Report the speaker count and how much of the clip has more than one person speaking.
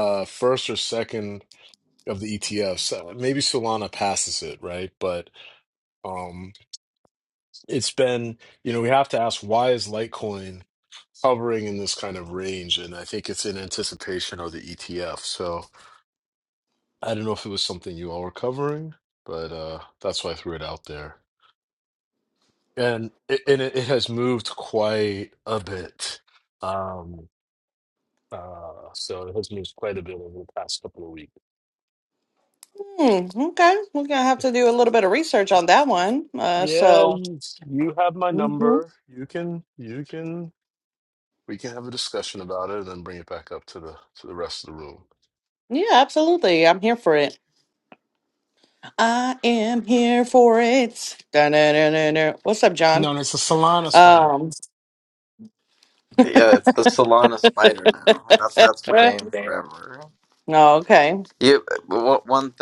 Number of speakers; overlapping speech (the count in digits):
4, about 3%